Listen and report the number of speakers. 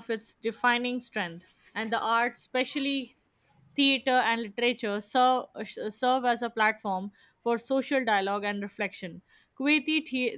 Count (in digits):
1